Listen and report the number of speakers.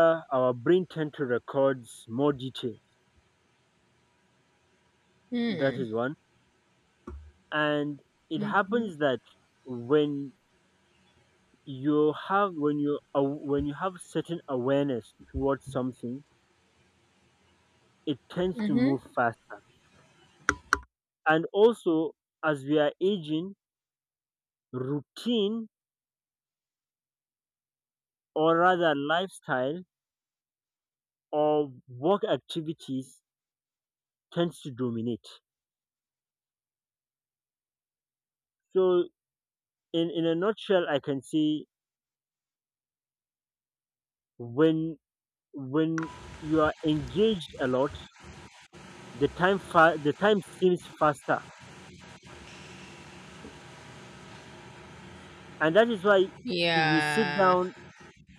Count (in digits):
2